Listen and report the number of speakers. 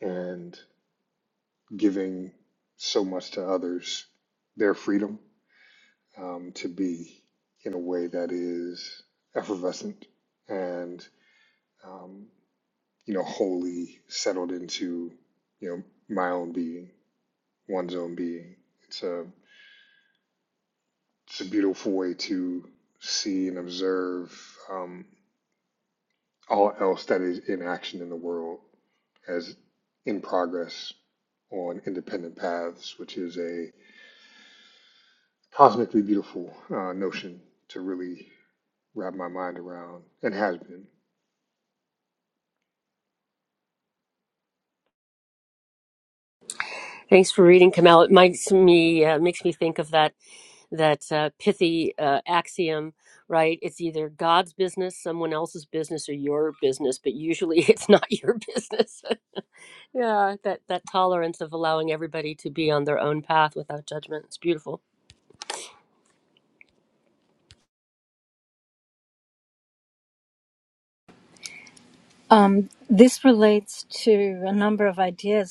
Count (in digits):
3